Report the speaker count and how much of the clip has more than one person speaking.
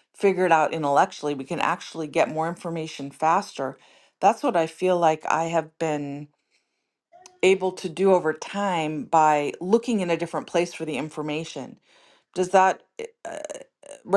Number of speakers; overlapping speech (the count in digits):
1, no overlap